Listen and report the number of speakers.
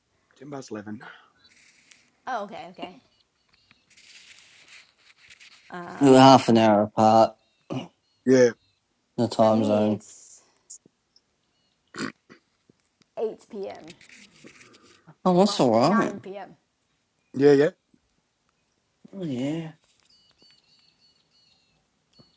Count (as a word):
three